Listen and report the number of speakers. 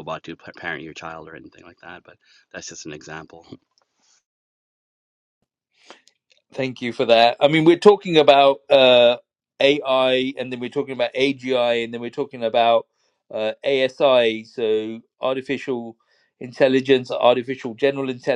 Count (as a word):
two